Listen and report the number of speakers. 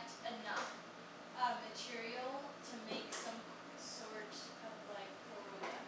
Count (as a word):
one